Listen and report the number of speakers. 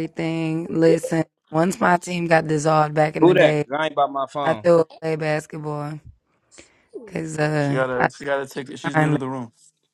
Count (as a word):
three